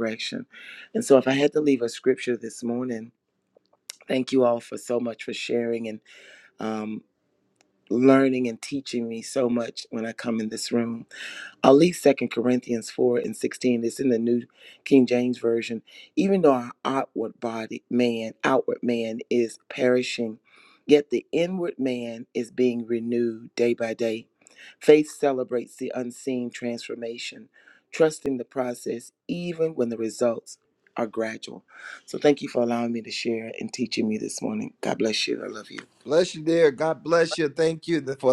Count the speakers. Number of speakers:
2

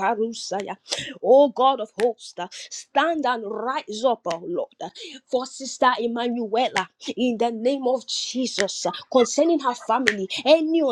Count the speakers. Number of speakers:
1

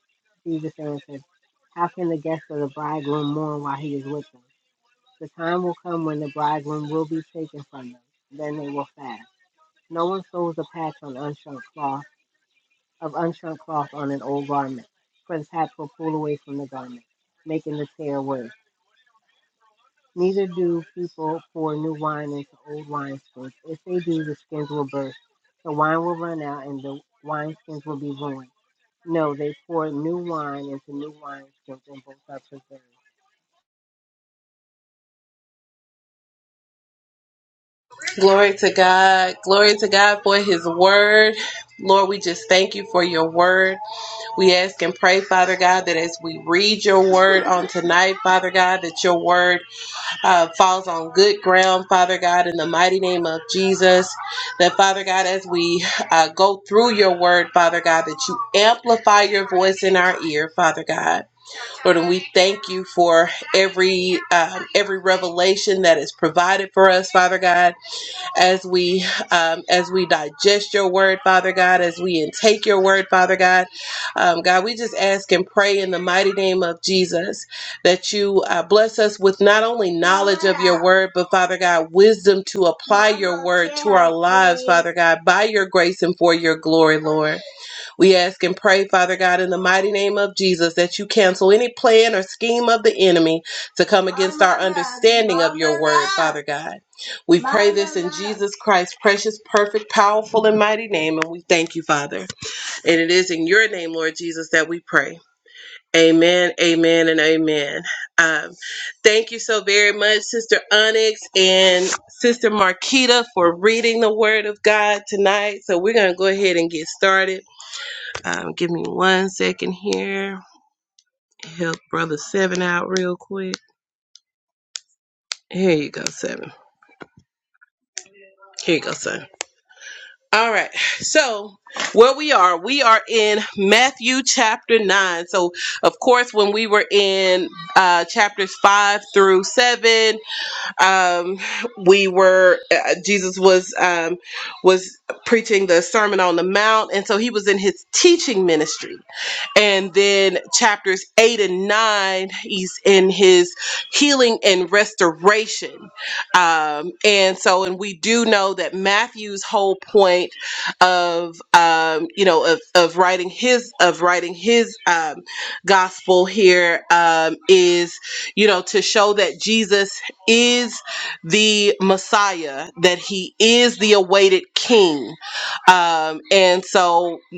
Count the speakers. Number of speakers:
2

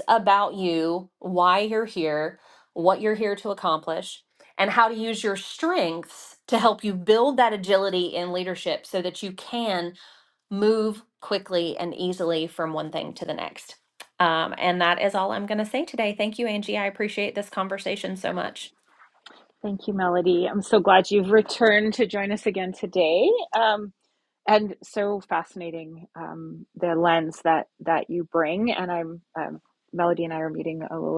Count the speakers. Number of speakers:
2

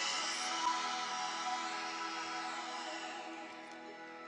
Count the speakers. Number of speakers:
0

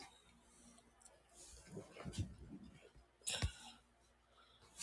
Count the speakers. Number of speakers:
0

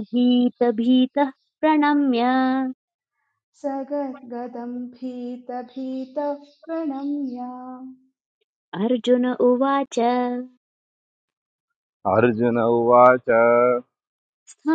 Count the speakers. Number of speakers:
3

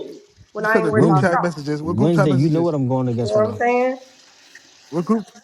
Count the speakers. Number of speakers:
3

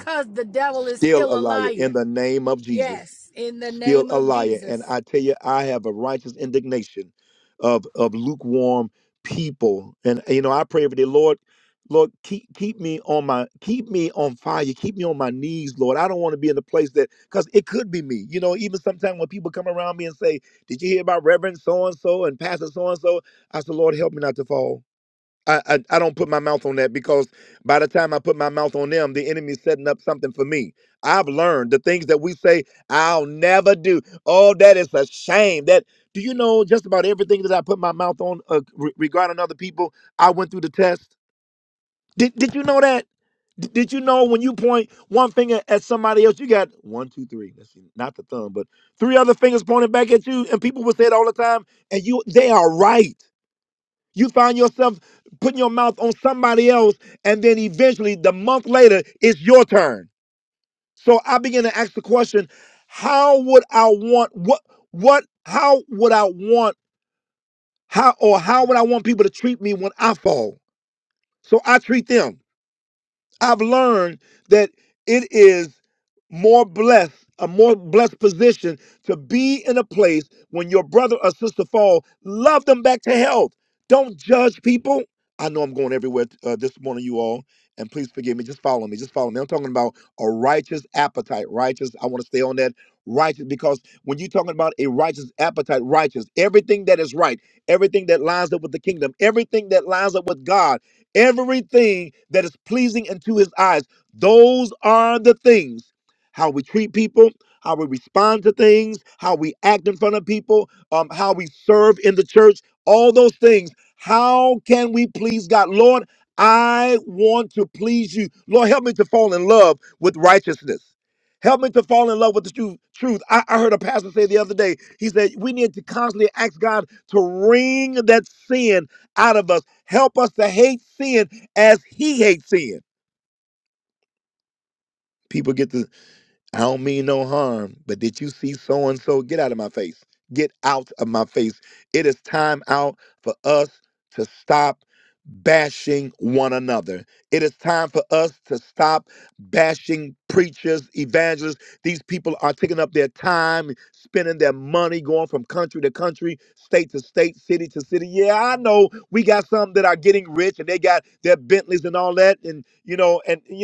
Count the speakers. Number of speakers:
2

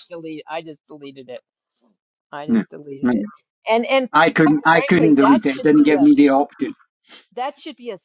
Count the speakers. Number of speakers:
2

